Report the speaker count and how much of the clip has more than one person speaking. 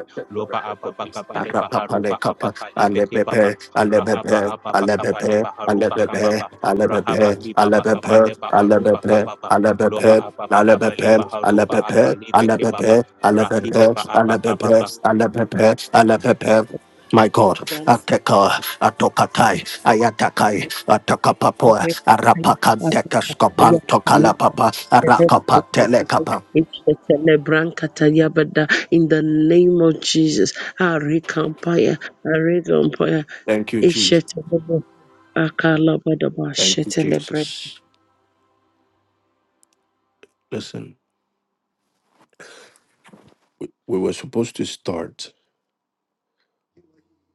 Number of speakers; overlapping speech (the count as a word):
three, about 34%